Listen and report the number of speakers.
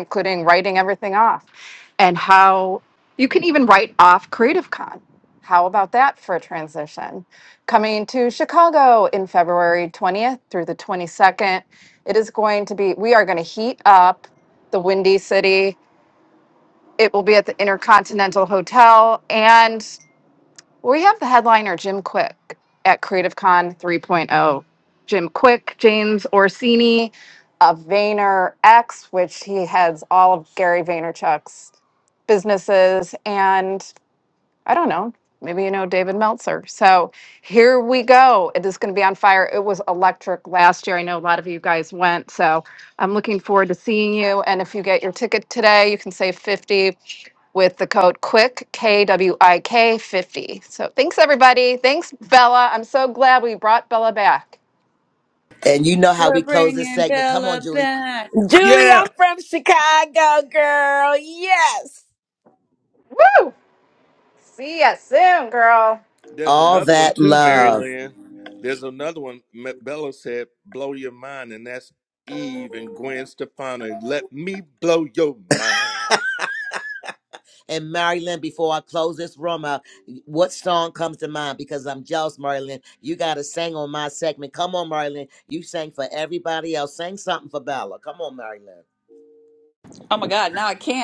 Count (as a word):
five